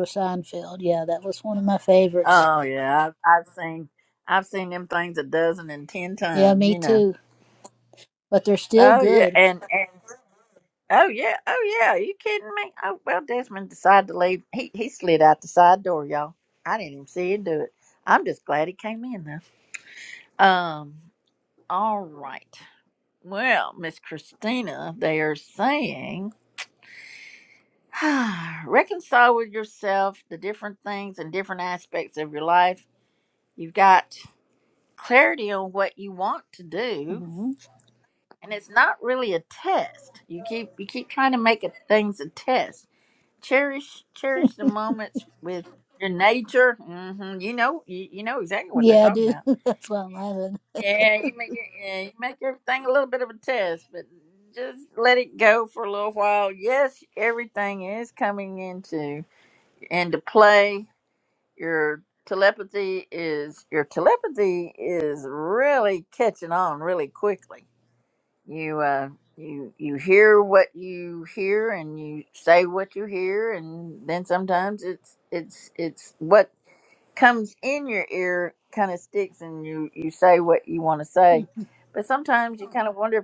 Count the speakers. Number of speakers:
2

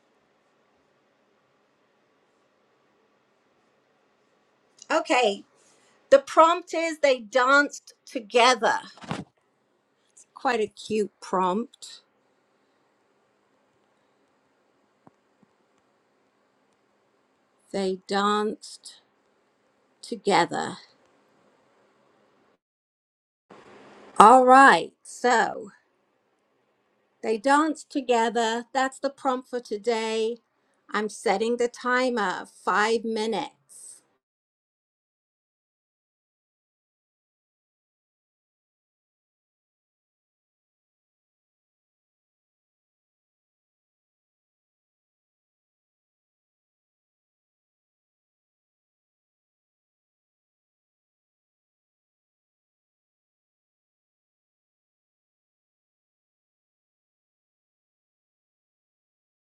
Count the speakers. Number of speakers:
1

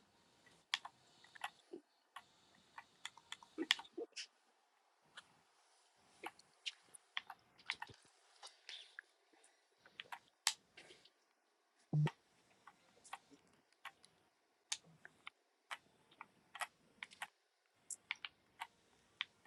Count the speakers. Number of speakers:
0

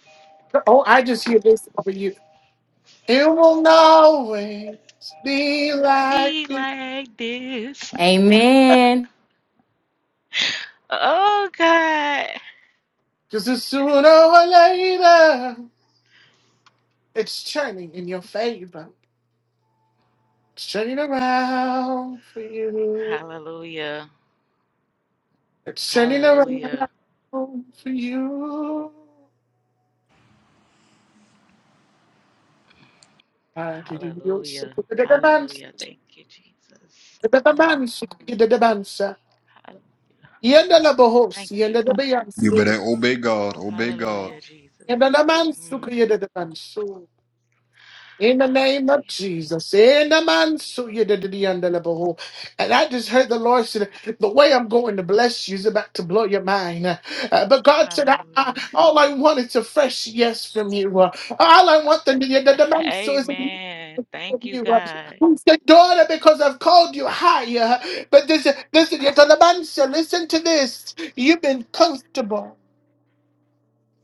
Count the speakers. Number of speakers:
4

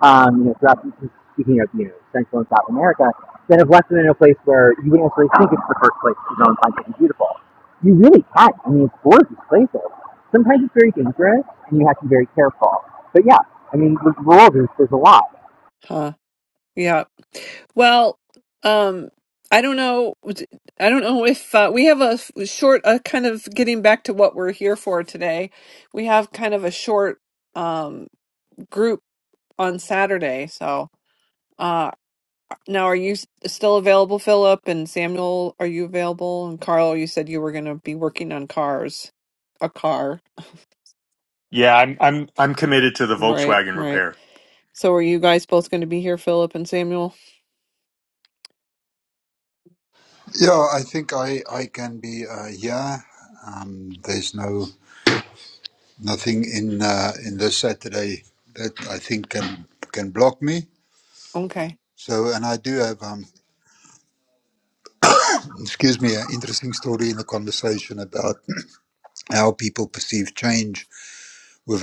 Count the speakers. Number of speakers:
4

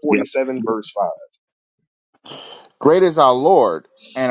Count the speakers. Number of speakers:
2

